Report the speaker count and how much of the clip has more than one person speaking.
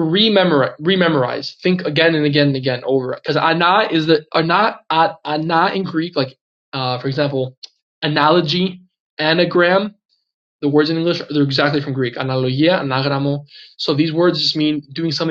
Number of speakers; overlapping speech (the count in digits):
1, no overlap